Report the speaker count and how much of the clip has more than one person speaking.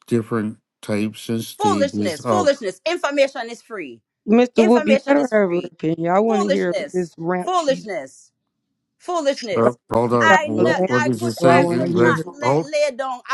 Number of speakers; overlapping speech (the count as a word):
three, about 43%